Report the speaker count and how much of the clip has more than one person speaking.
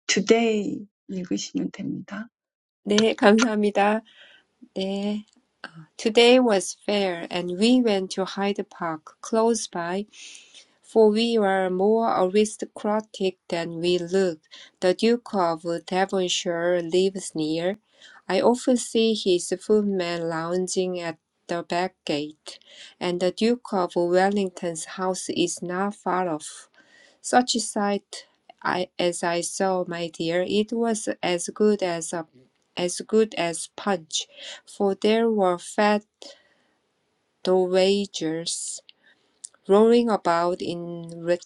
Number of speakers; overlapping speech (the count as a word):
two, no overlap